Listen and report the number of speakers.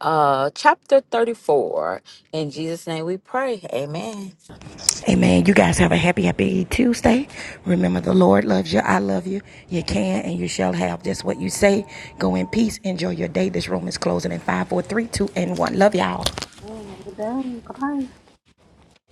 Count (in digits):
3